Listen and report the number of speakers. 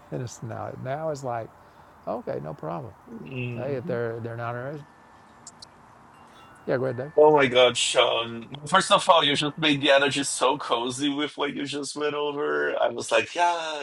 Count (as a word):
two